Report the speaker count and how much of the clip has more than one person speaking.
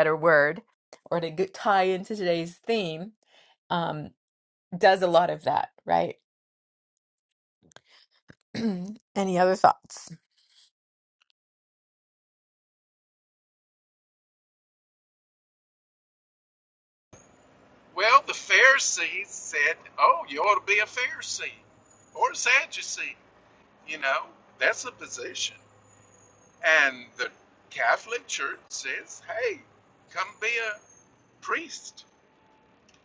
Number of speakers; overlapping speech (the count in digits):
2, no overlap